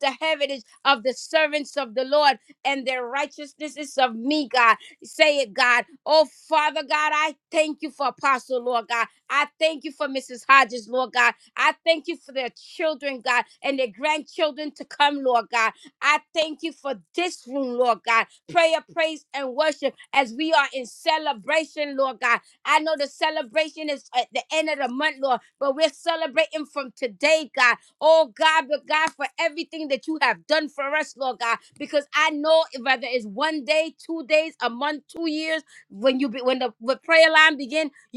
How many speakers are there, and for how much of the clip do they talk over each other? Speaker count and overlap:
one, no overlap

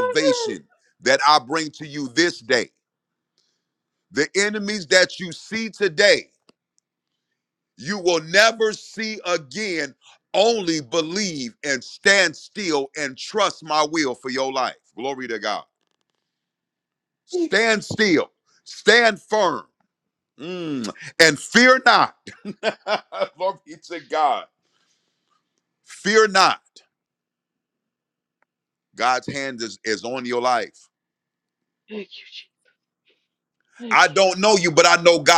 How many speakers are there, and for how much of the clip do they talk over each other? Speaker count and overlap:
two, about 2%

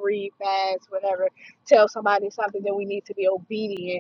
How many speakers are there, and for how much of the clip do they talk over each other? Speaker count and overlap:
one, no overlap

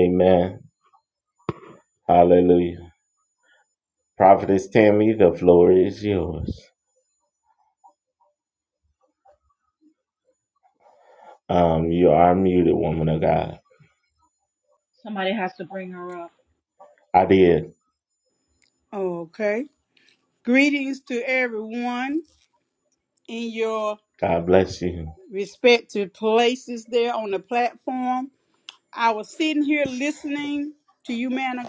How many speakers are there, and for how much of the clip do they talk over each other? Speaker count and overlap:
three, no overlap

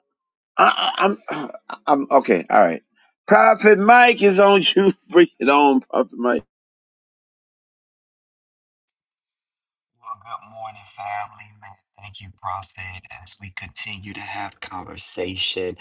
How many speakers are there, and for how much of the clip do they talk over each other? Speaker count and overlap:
two, no overlap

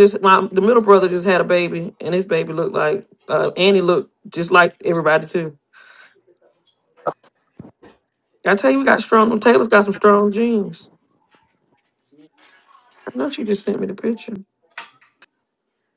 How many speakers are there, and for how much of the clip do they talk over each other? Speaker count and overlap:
one, no overlap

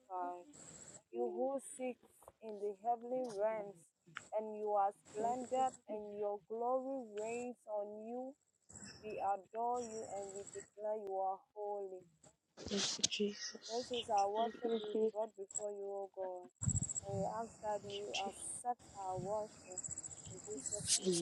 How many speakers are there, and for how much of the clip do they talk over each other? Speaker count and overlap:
two, about 3%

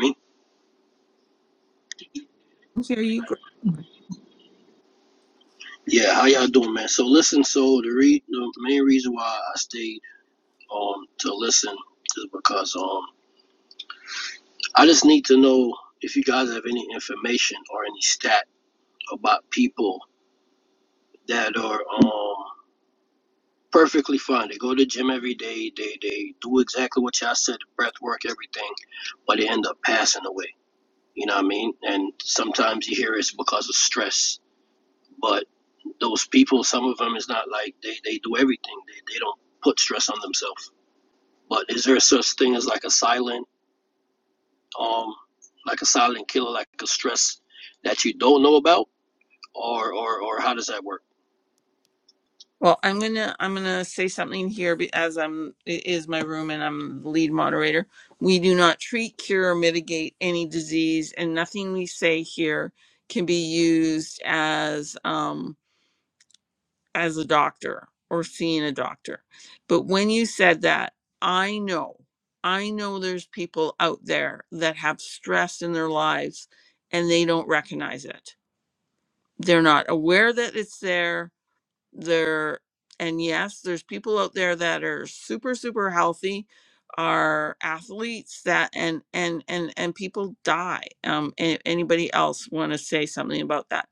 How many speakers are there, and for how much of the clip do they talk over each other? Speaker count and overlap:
two, no overlap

